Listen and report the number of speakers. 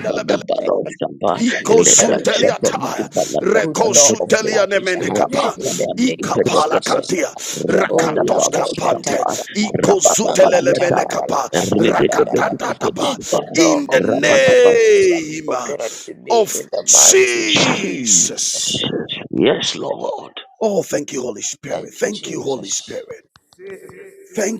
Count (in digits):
3